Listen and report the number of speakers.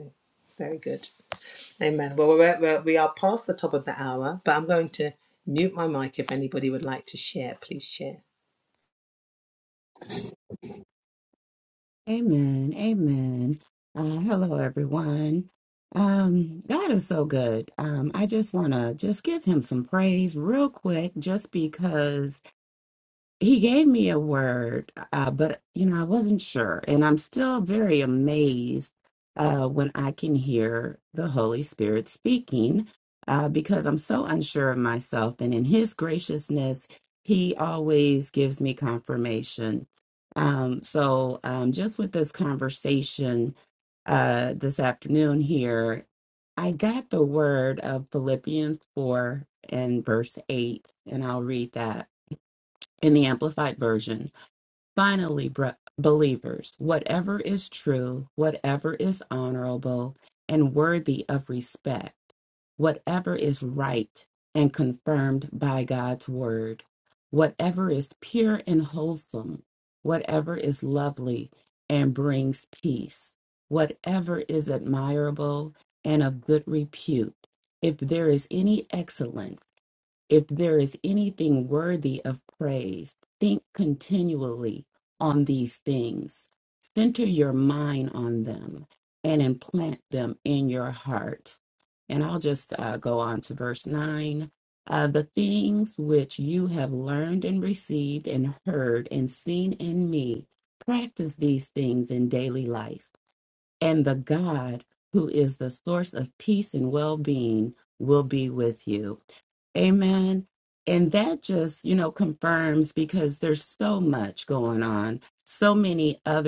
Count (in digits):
2